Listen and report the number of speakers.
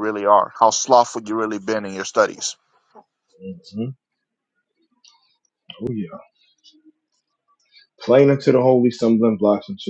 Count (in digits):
2